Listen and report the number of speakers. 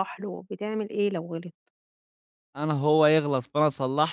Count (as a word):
two